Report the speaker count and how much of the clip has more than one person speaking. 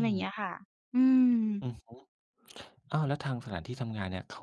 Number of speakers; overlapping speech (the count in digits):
2, about 2%